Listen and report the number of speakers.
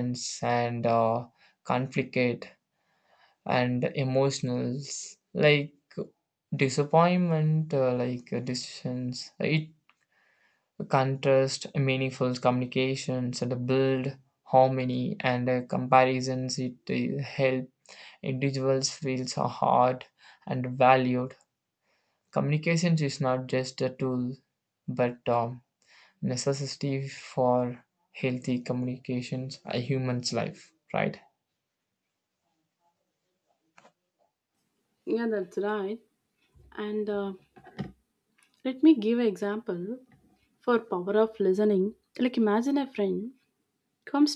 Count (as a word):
two